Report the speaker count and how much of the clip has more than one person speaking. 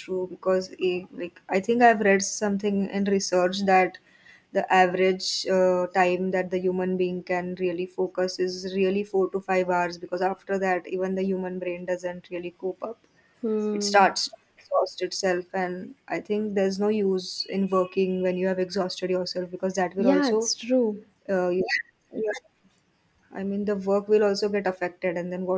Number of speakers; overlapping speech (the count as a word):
two, about 3%